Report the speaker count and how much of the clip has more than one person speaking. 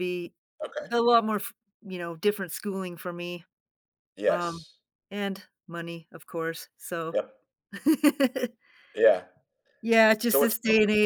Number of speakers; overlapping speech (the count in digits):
2, about 4%